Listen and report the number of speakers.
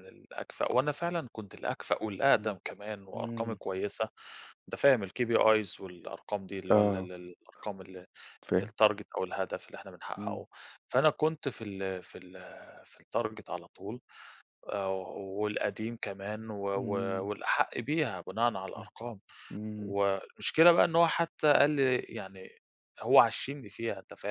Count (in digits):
2